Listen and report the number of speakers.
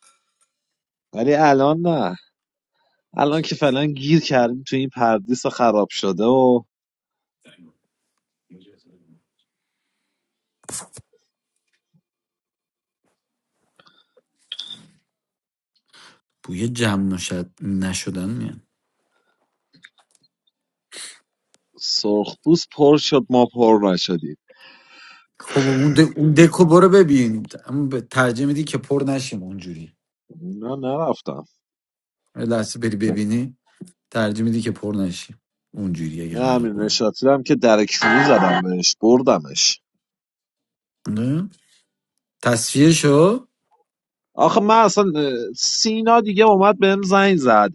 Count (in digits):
2